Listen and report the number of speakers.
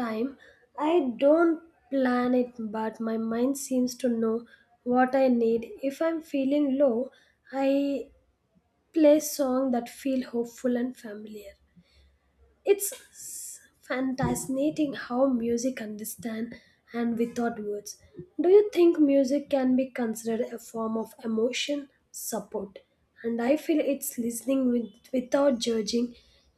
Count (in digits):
1